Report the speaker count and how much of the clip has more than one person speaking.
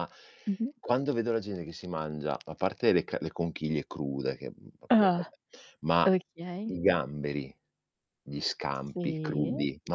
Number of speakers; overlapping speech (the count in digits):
2, about 12%